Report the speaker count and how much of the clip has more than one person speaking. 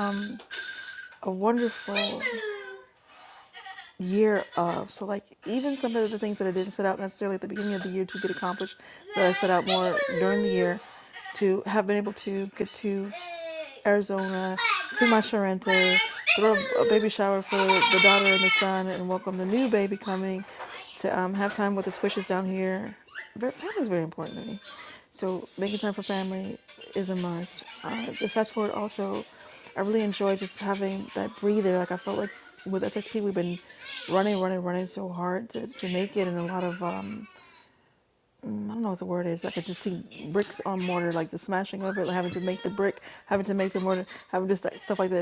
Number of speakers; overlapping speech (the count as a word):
one, no overlap